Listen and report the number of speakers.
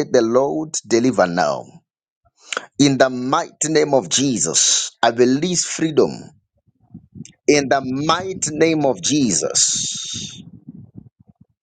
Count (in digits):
1